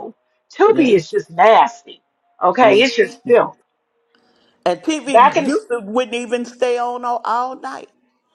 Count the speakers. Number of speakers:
two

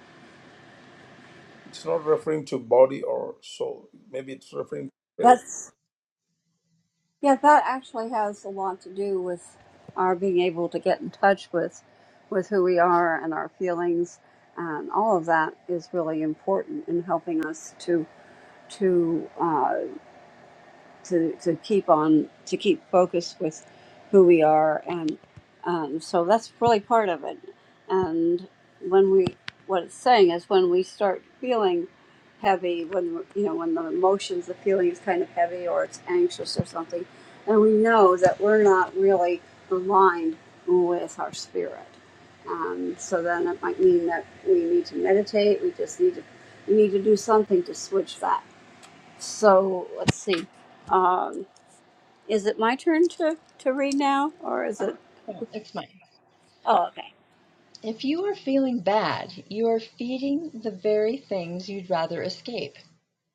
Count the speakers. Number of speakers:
three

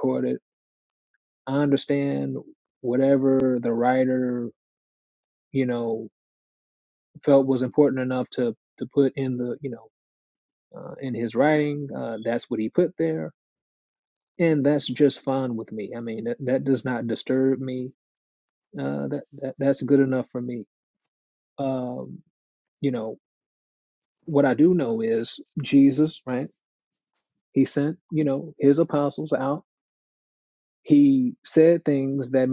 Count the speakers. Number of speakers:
one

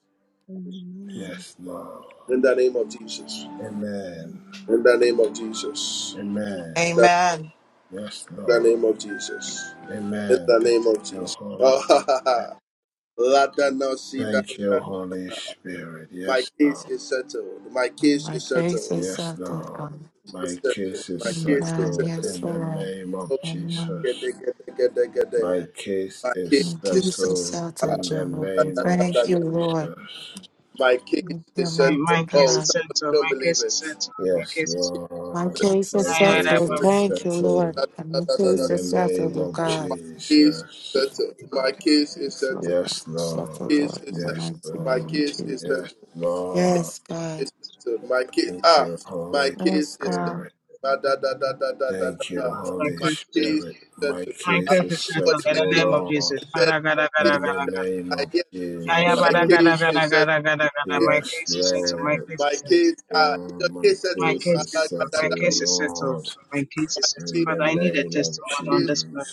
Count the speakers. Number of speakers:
five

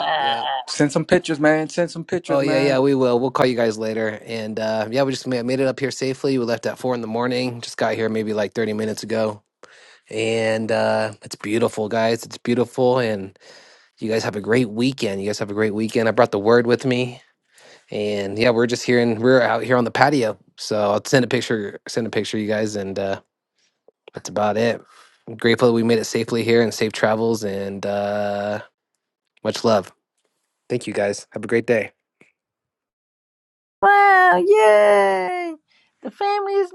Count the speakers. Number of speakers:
three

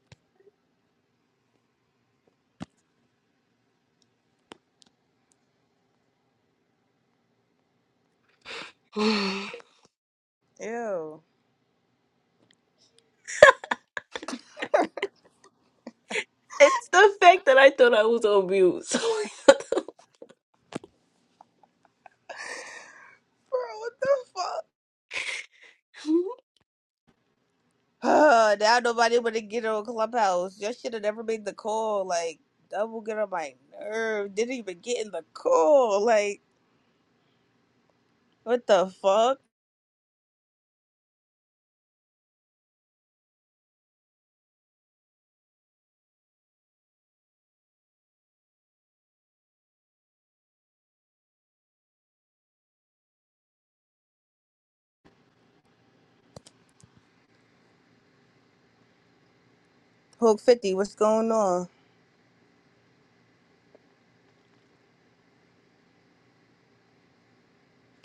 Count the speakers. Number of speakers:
two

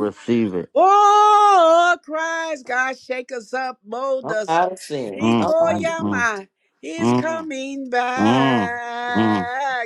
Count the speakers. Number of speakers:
three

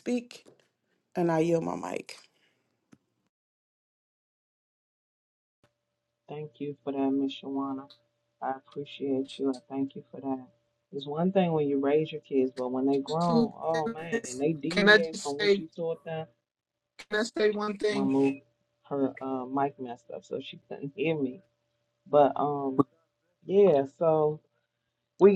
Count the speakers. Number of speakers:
three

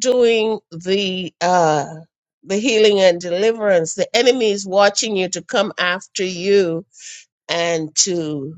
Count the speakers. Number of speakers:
one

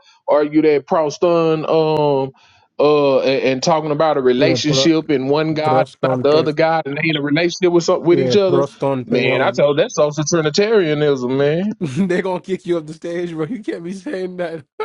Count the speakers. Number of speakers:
two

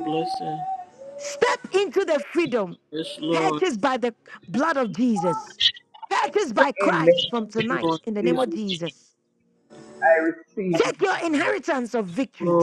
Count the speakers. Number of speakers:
three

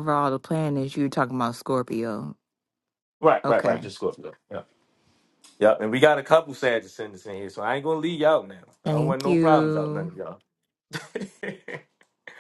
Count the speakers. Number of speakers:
two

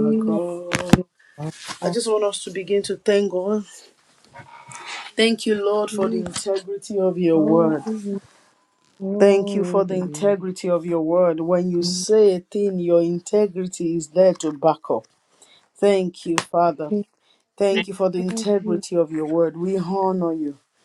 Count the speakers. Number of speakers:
two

